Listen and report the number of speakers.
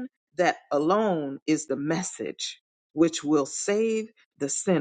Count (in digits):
1